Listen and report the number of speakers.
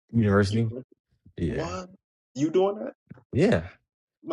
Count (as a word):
two